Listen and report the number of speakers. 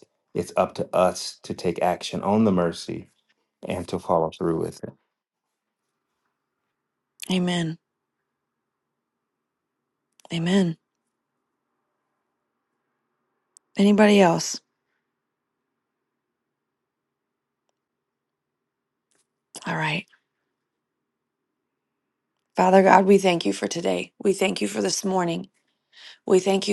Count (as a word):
two